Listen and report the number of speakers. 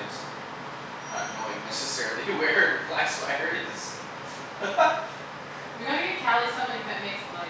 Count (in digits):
2